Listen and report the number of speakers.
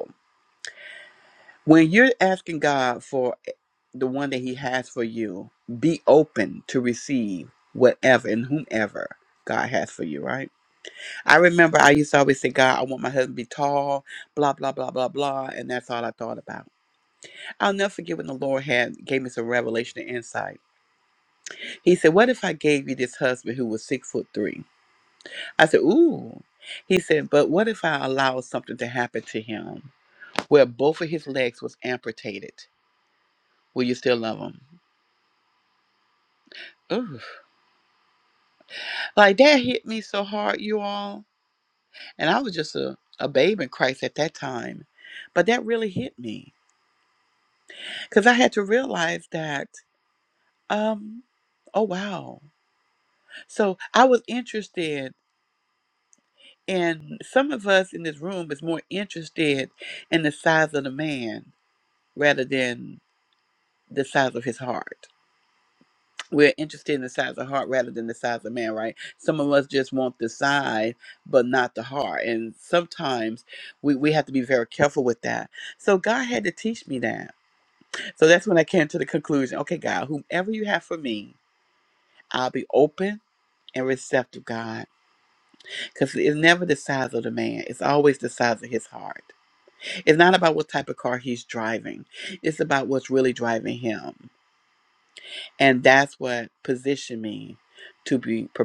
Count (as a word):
one